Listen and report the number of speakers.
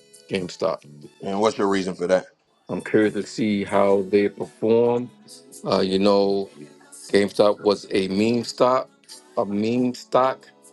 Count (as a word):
two